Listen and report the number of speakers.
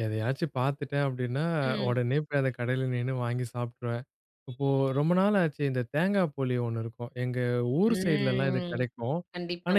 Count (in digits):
2